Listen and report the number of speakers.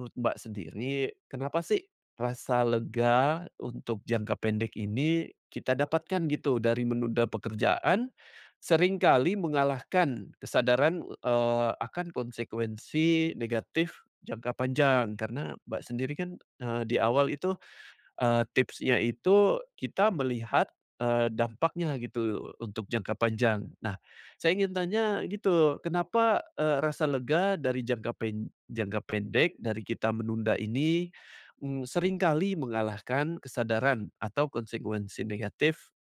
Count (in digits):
1